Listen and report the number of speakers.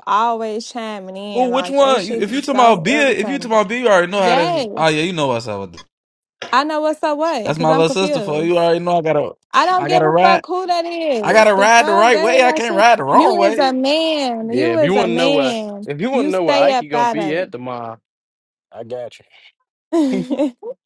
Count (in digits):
3